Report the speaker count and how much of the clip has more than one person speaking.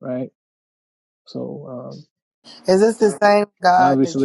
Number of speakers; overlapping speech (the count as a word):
two, about 11%